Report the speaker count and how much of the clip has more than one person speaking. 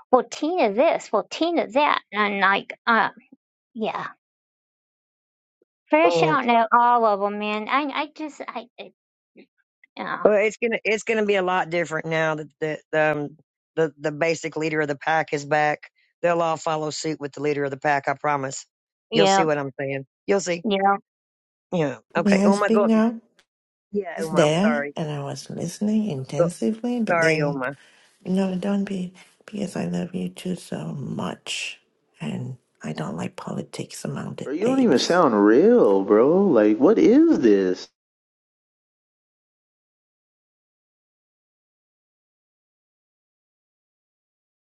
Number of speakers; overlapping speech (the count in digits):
4, about 7%